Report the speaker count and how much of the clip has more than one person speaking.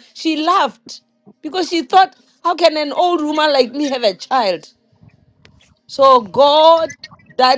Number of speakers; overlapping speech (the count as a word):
one, no overlap